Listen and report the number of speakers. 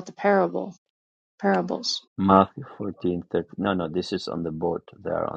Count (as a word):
two